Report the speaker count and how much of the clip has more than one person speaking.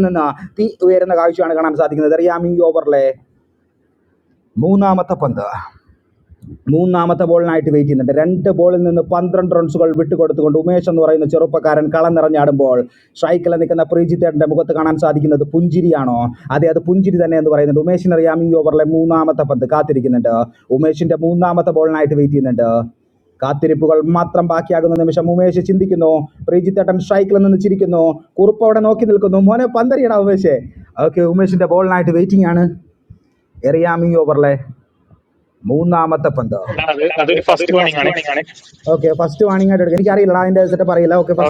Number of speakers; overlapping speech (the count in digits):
2, under 1%